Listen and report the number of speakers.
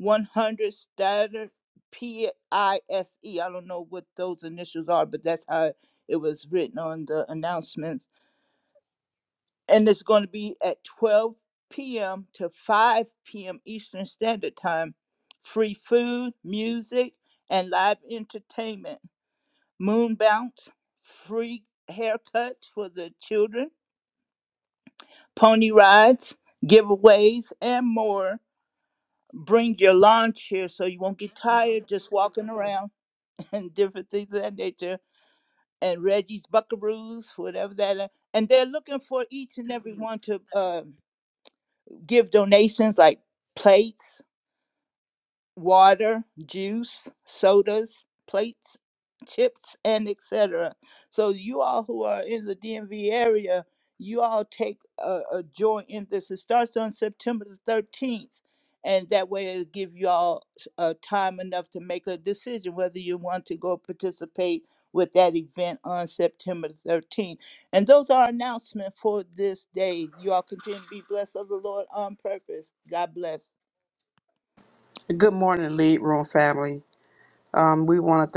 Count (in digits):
2